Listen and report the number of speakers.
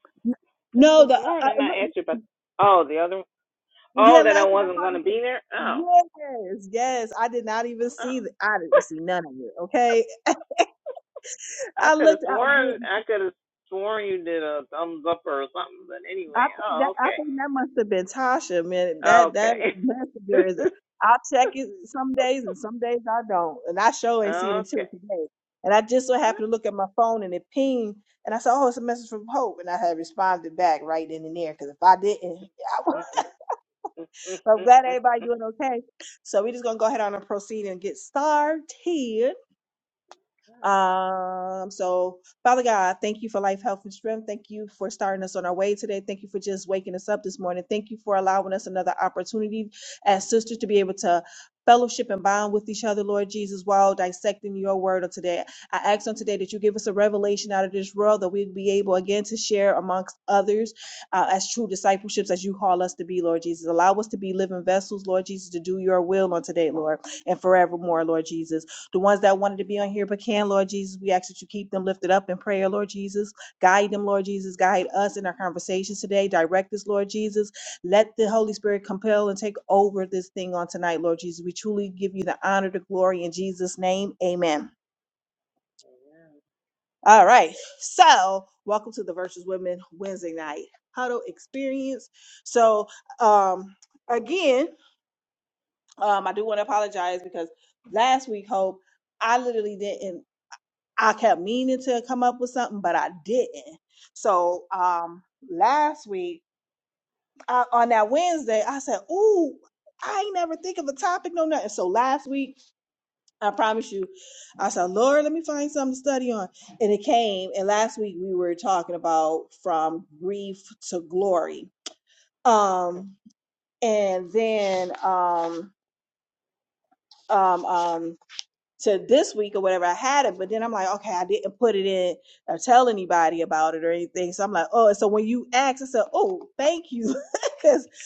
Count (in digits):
2